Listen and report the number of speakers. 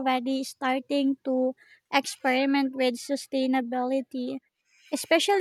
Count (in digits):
1